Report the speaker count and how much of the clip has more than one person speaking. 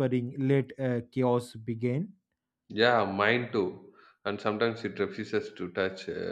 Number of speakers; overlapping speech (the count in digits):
2, no overlap